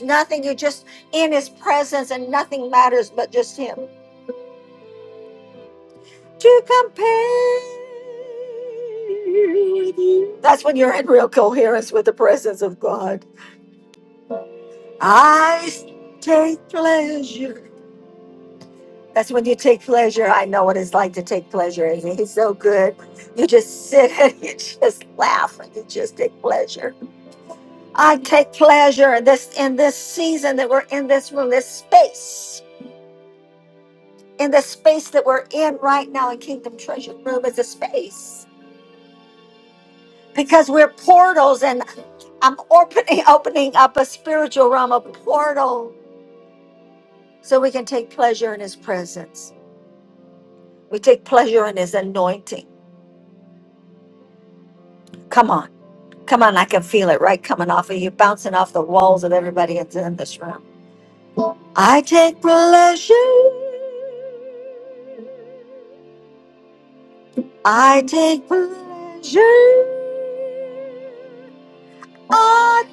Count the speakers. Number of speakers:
1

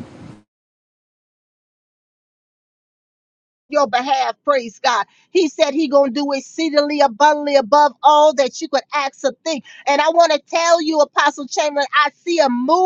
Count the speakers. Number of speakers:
1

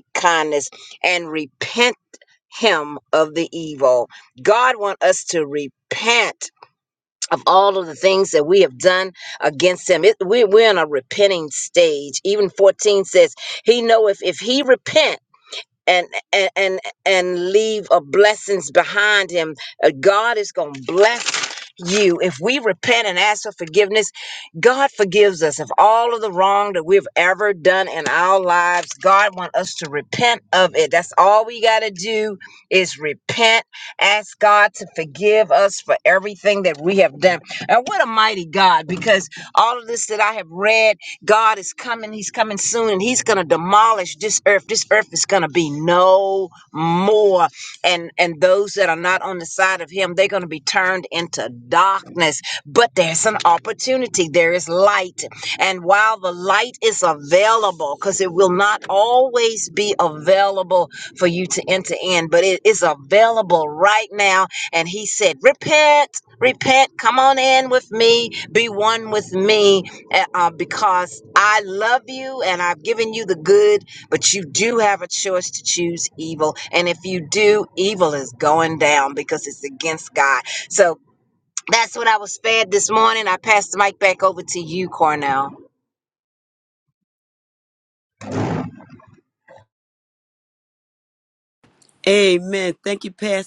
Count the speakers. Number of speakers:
2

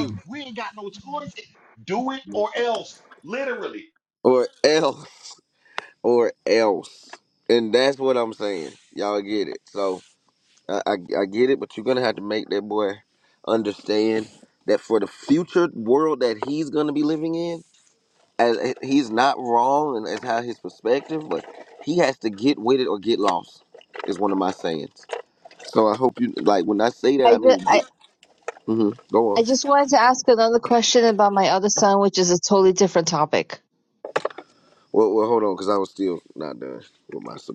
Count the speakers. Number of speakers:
3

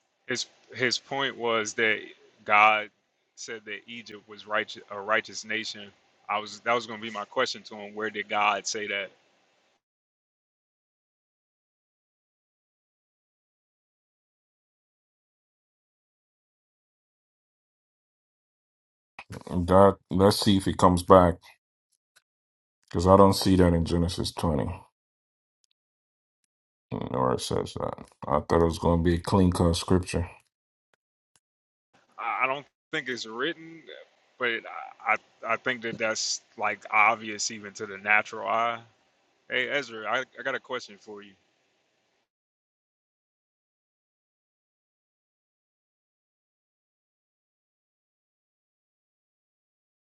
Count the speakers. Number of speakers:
2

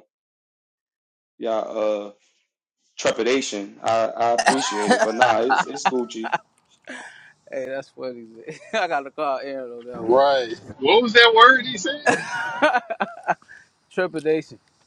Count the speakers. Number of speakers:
3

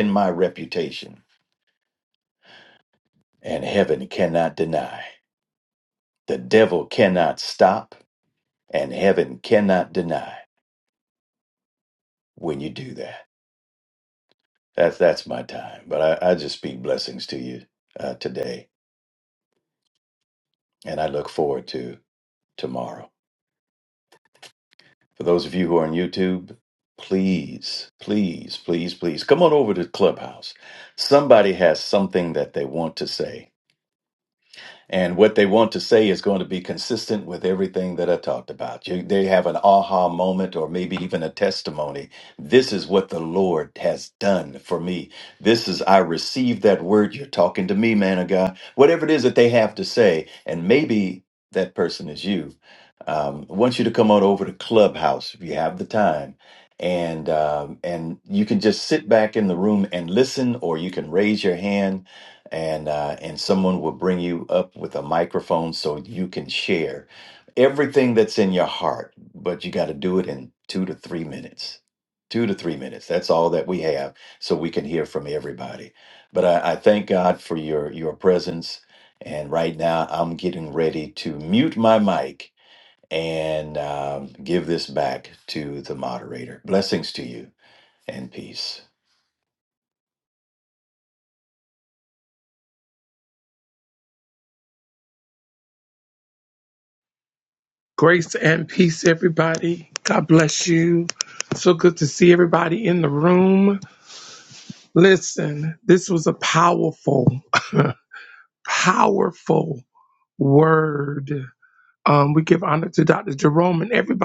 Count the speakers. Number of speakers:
2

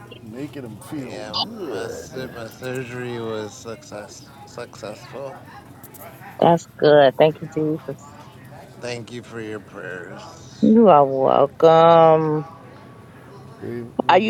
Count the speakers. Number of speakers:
3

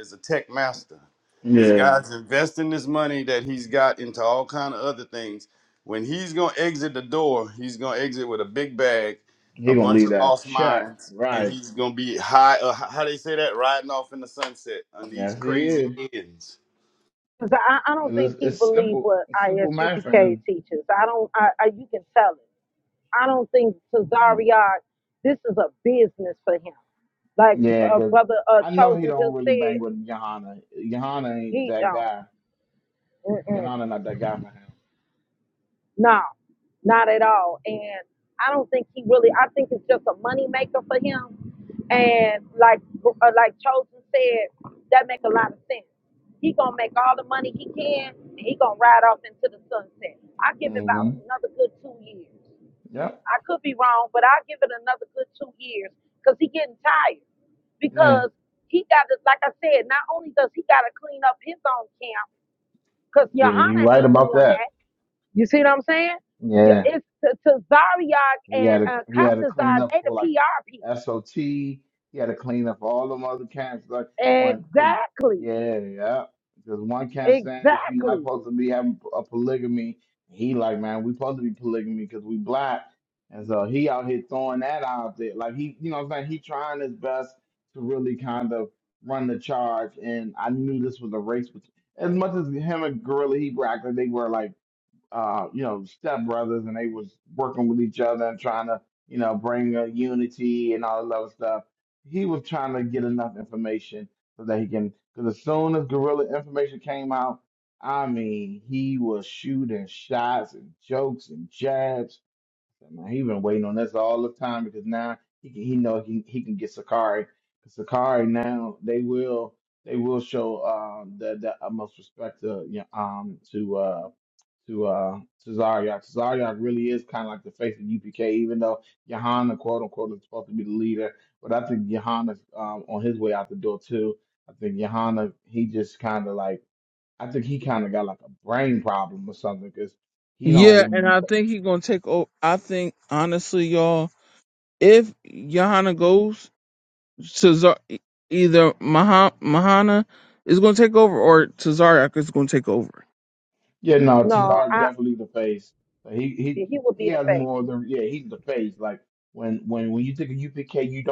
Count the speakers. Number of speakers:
4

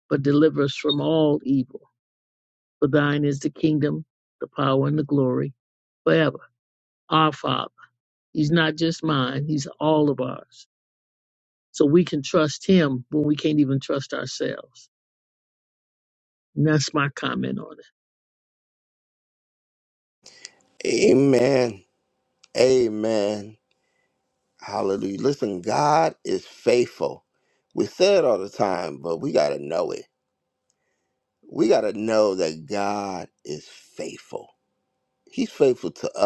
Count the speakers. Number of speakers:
2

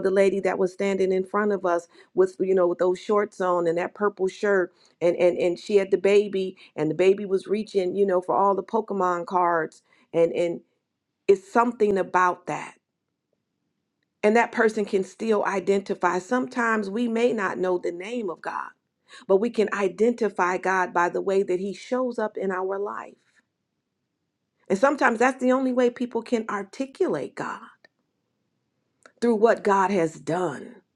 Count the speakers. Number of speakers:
1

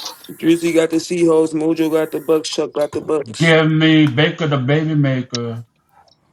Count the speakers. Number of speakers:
2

